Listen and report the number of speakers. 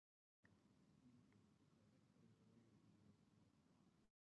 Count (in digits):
0